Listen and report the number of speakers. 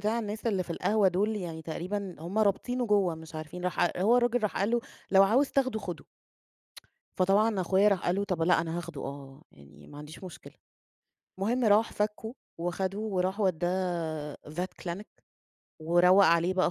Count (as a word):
one